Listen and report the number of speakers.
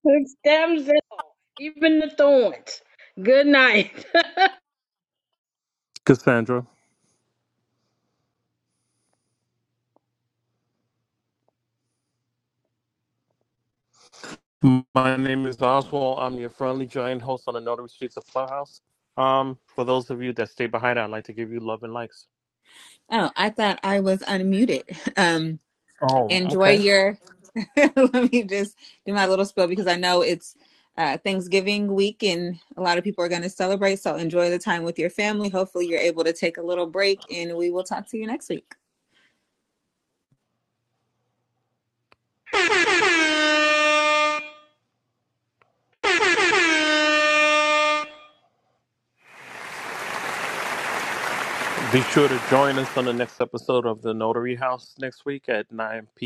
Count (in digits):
3